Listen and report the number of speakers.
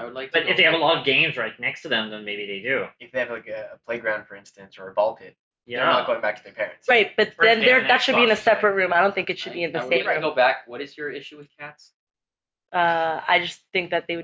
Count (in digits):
4